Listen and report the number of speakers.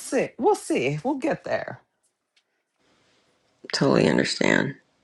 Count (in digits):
2